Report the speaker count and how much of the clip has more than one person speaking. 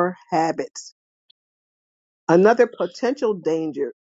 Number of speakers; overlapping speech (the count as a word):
one, no overlap